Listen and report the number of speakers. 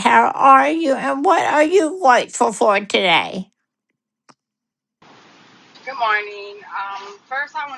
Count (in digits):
2